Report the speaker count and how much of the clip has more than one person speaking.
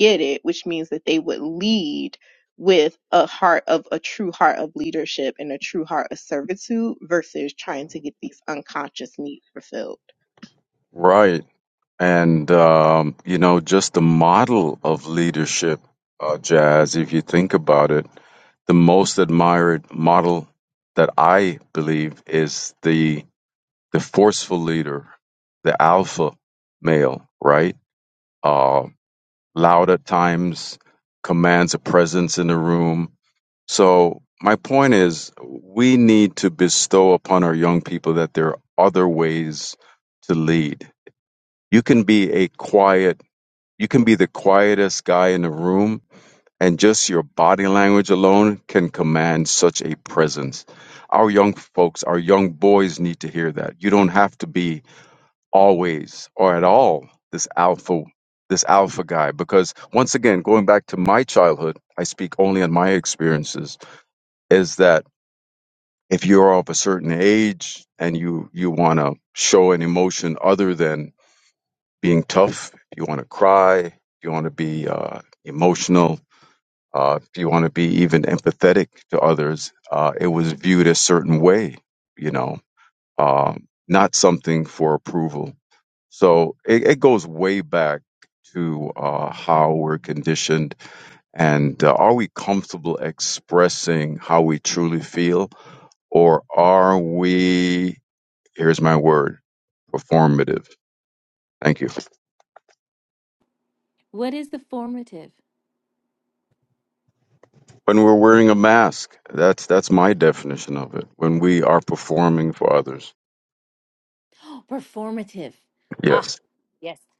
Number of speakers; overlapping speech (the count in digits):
3, under 1%